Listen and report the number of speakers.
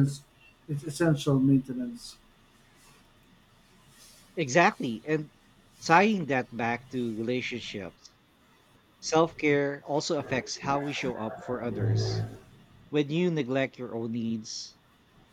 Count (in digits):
2